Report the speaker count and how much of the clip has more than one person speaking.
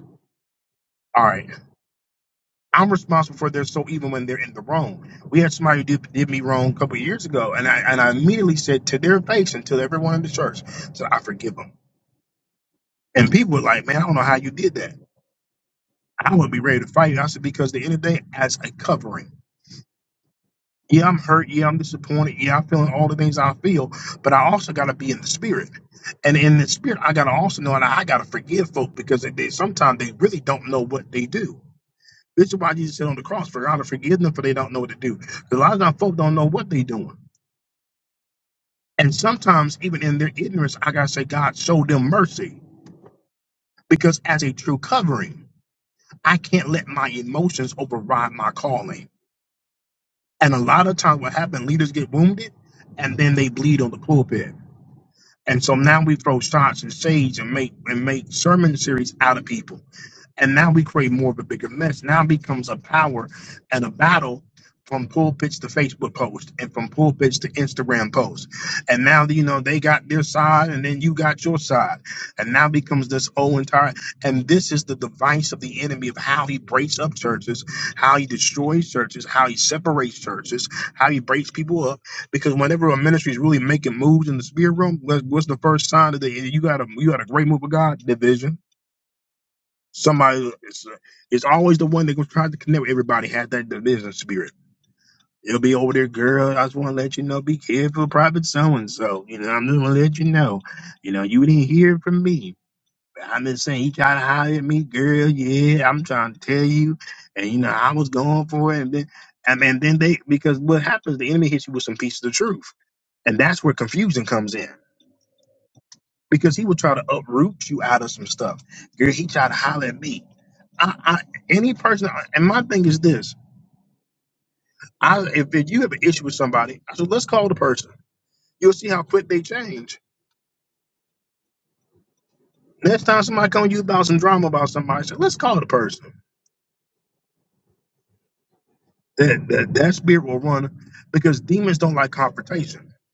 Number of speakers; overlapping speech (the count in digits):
1, no overlap